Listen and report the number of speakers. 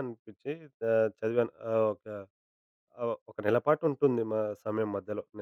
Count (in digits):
1